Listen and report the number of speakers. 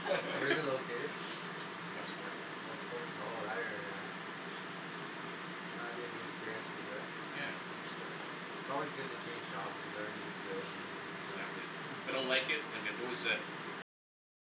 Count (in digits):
2